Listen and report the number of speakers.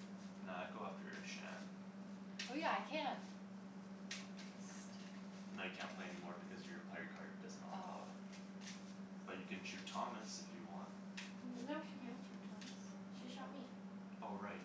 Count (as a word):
three